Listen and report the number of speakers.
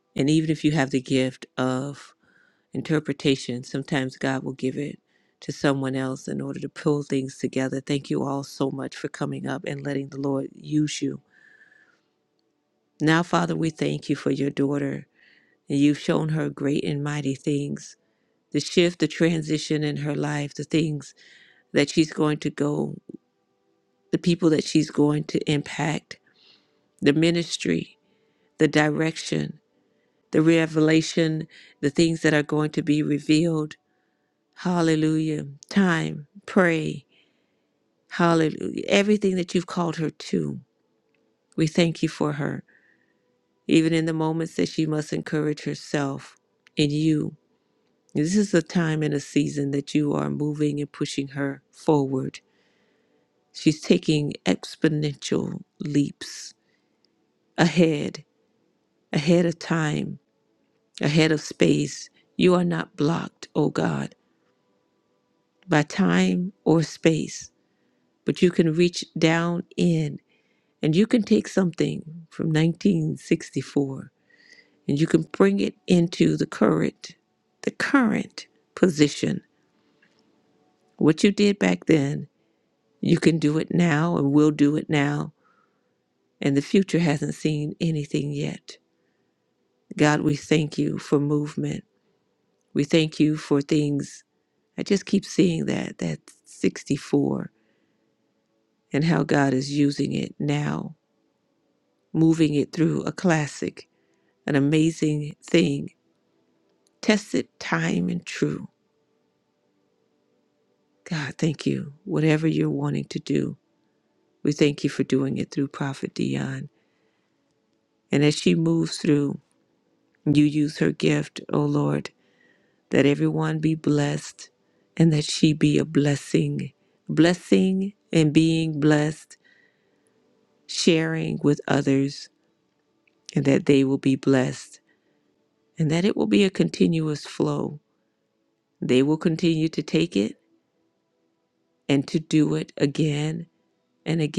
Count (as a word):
one